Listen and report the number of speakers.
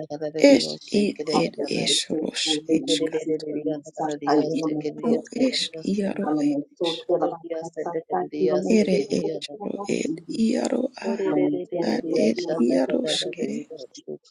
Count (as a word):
three